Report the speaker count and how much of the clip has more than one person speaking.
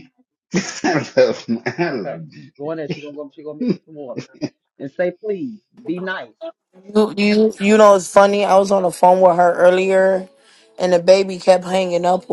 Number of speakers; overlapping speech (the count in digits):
3, about 4%